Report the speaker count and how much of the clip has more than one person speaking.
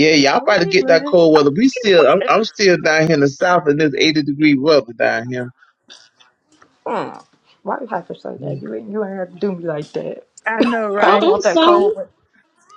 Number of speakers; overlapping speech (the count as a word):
three, about 18%